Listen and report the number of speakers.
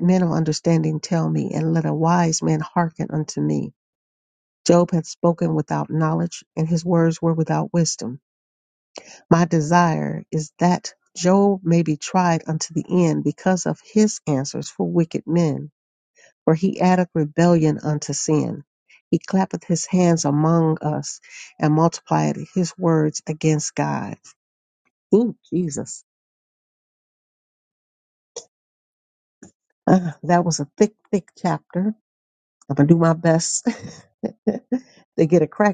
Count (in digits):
1